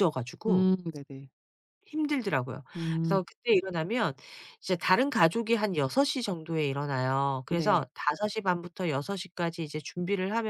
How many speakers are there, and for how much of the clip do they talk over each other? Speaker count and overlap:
2, about 7%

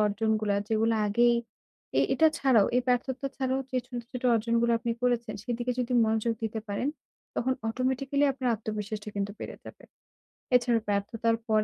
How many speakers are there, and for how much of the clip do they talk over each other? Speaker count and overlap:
1, no overlap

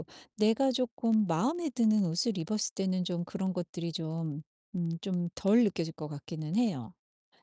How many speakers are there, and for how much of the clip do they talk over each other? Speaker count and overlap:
1, no overlap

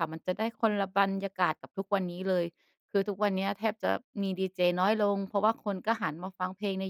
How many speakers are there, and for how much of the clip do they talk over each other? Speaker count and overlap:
1, no overlap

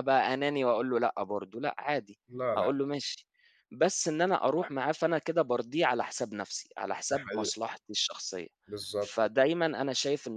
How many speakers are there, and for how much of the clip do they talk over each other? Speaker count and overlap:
2, about 8%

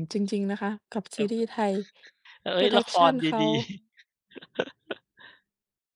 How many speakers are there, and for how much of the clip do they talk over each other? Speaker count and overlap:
2, about 19%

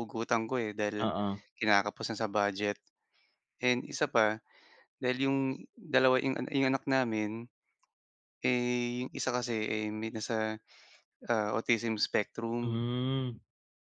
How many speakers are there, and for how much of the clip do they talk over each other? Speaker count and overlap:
2, about 2%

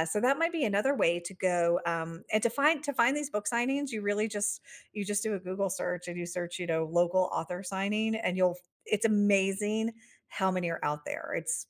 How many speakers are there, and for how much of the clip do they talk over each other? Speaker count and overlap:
1, no overlap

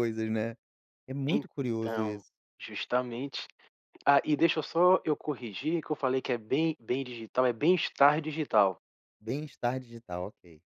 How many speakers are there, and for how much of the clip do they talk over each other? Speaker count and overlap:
2, about 5%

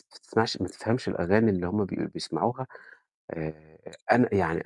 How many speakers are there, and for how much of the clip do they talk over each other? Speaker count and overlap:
1, no overlap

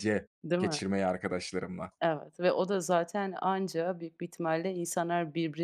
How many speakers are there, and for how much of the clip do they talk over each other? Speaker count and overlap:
2, about 4%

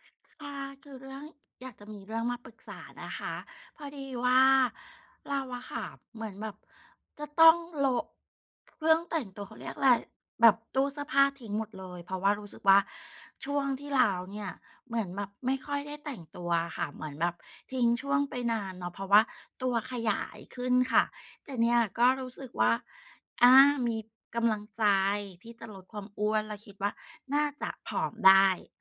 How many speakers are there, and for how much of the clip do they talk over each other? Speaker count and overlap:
1, no overlap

